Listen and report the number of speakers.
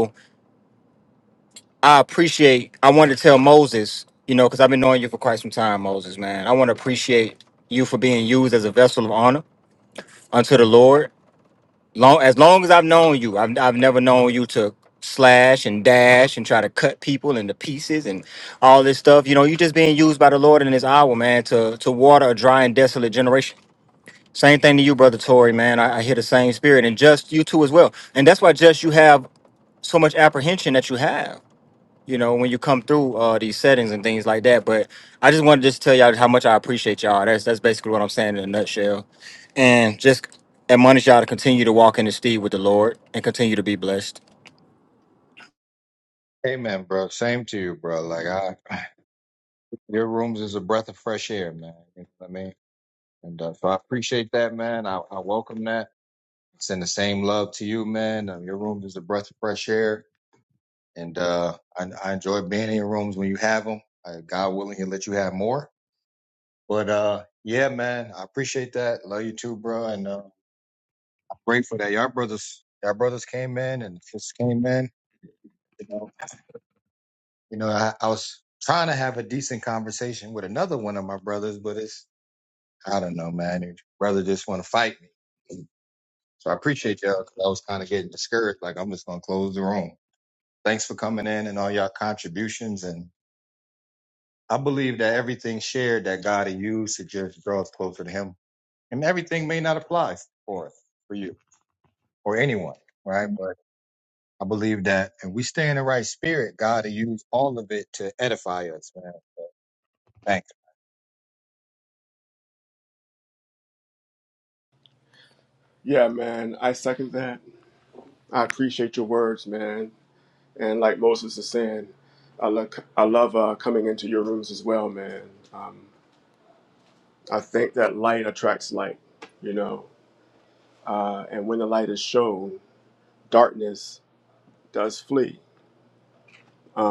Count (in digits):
3